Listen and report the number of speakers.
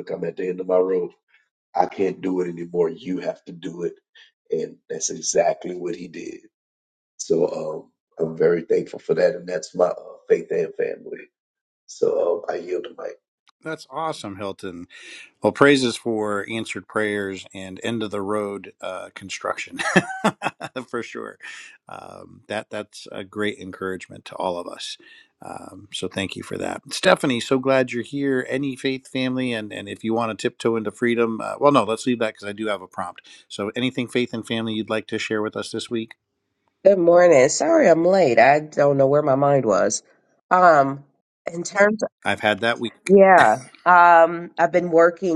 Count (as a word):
three